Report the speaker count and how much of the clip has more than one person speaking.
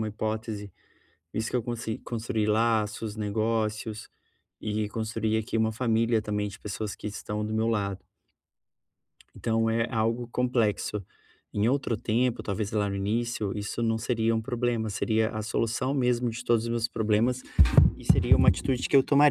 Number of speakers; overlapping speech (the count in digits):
1, no overlap